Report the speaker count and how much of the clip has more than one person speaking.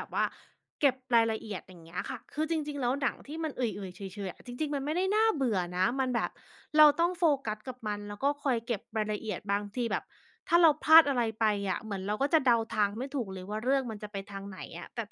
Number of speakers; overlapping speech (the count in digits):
1, no overlap